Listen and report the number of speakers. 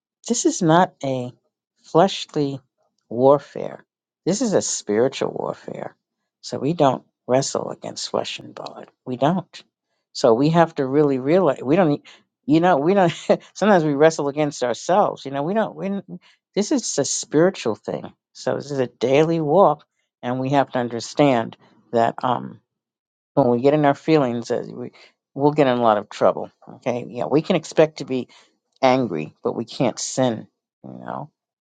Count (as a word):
one